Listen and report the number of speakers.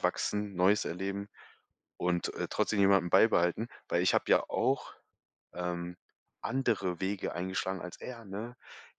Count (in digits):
1